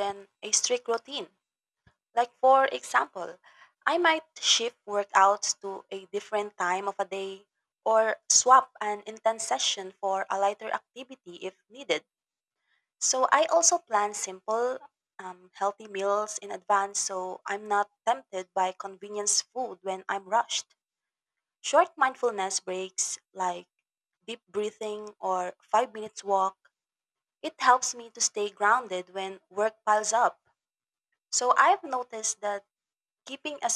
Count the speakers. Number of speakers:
one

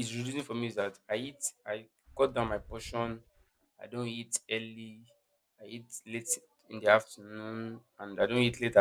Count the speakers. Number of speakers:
one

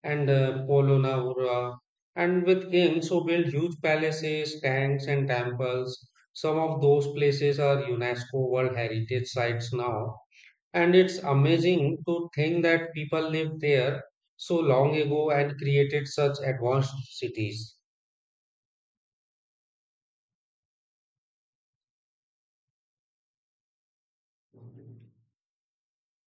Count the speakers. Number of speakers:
one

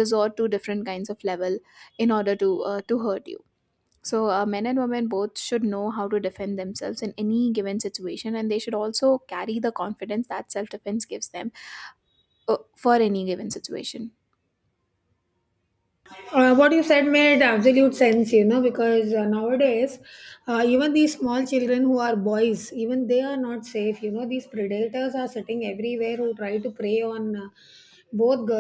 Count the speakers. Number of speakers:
two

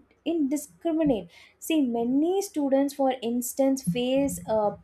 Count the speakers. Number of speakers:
one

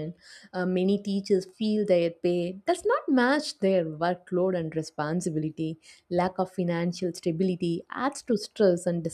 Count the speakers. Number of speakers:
one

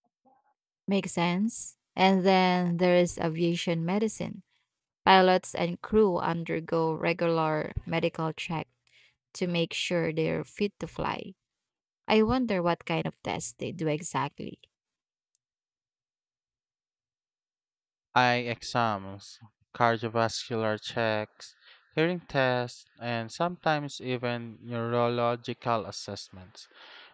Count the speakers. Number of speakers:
two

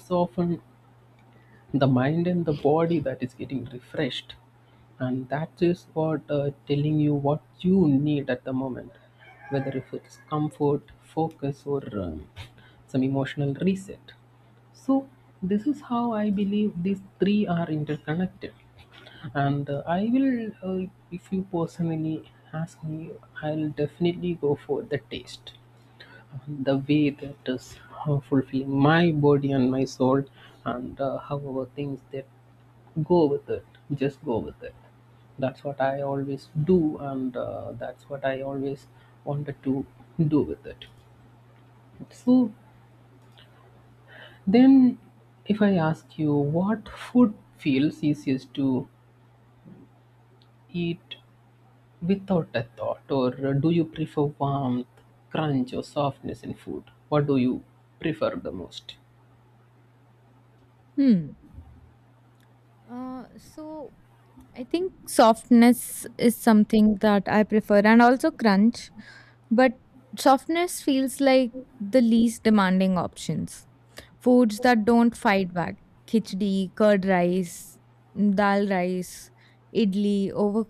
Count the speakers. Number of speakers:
two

